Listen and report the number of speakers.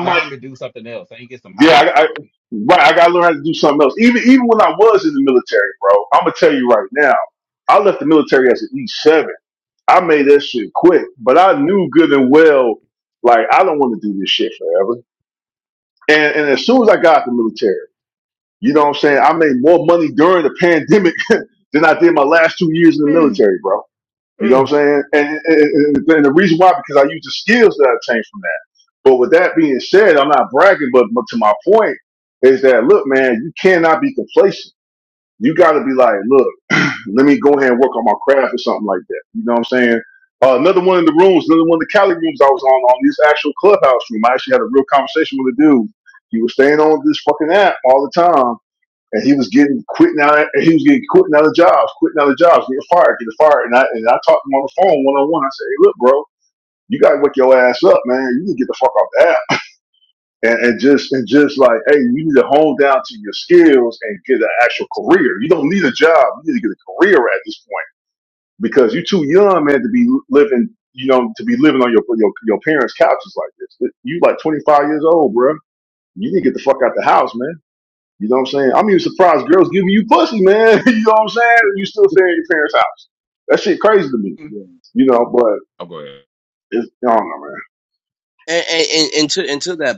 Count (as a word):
three